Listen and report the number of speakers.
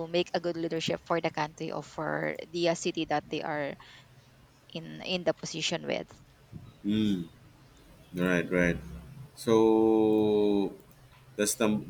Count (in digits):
2